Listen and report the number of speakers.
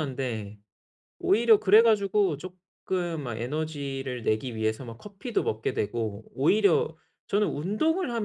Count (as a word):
one